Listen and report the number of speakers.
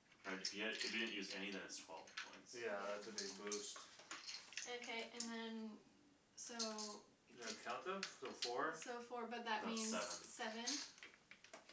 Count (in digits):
3